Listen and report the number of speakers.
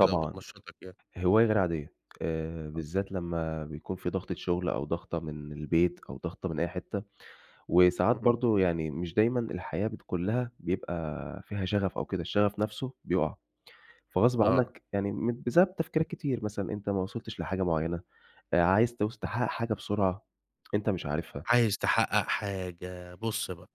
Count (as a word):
two